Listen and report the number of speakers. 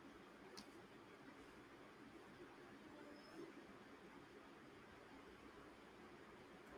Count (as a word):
zero